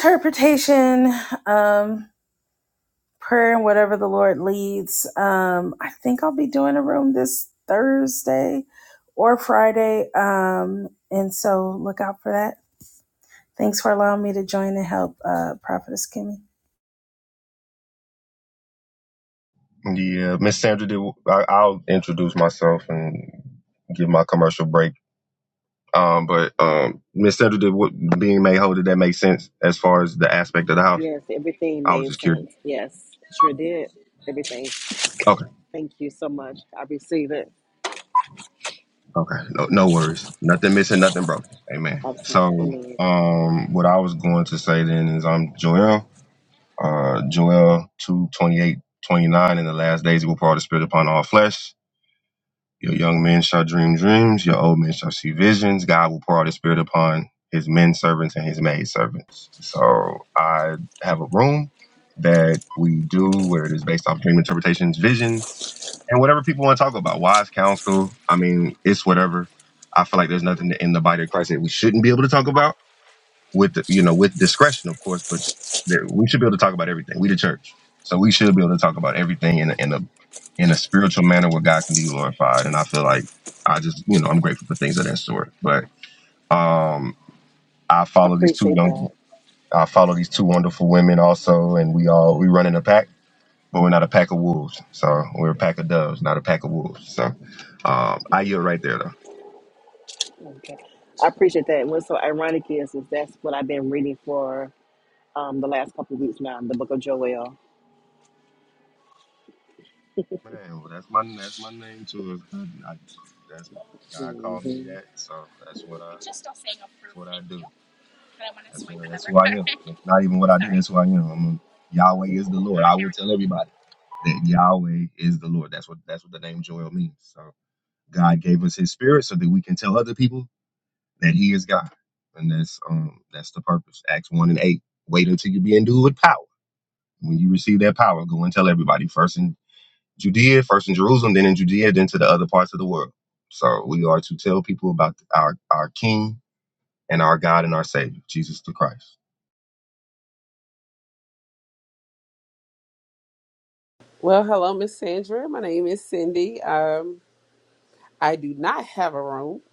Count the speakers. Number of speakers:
four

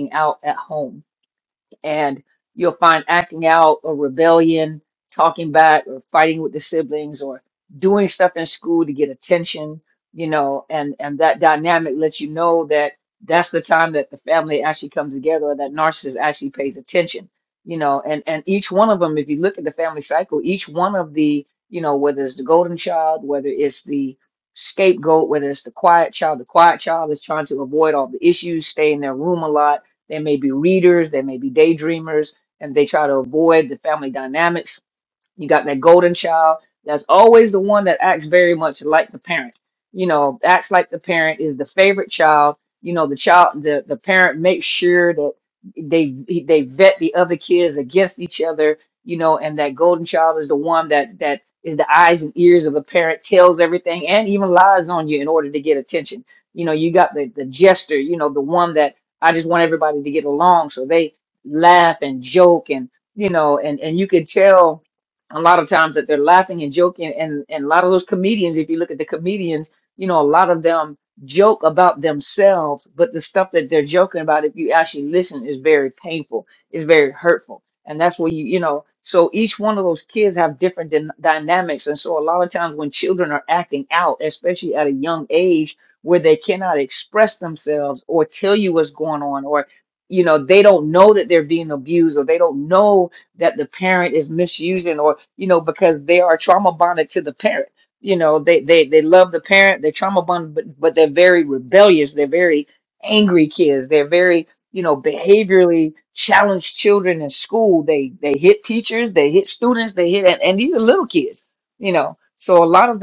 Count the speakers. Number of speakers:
one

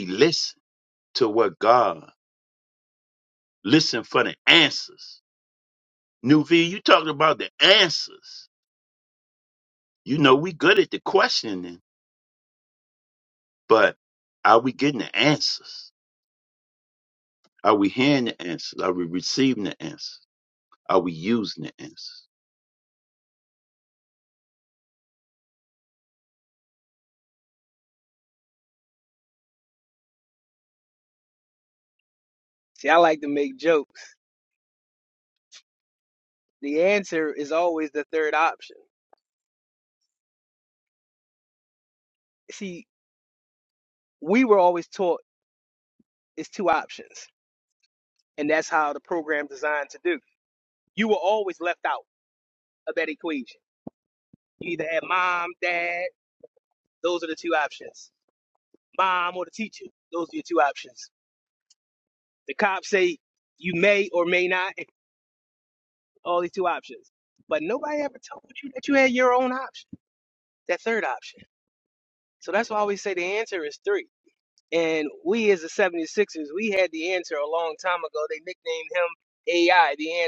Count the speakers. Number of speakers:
two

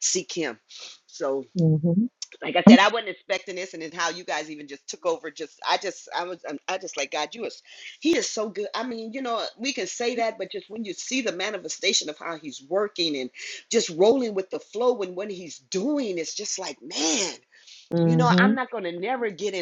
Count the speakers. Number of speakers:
two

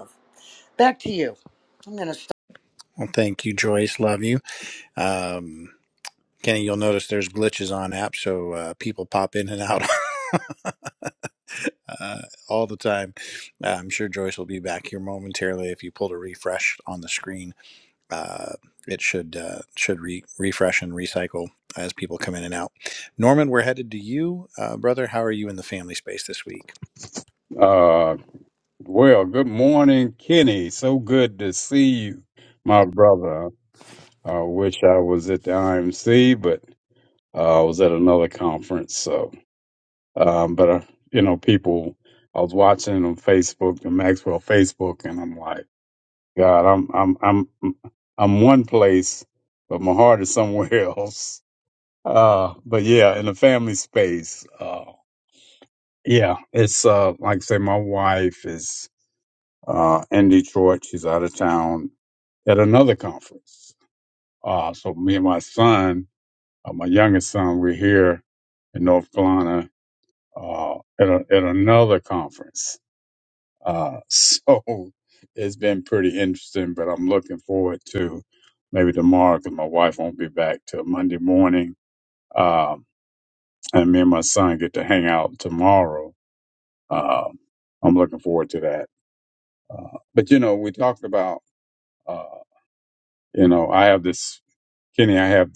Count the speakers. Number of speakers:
three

